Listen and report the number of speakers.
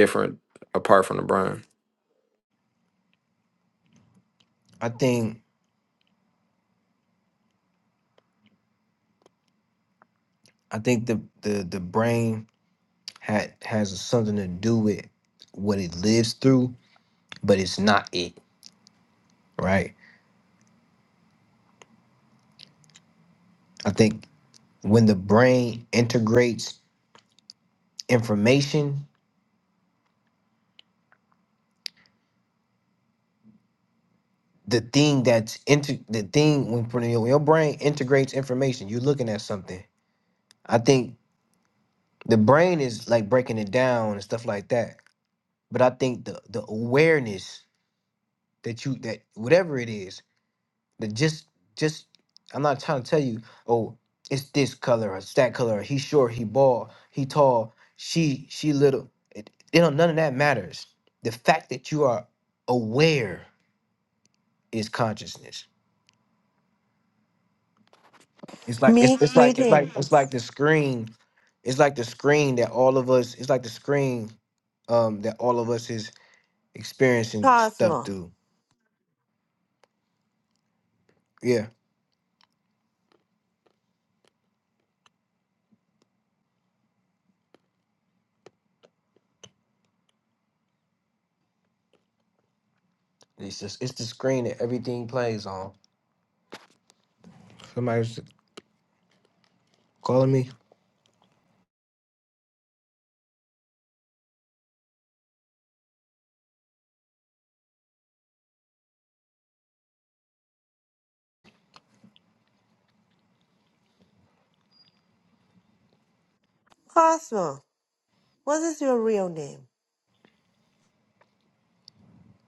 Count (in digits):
3